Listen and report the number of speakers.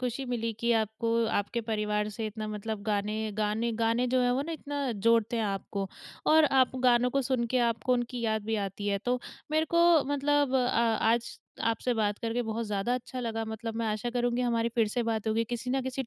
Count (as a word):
one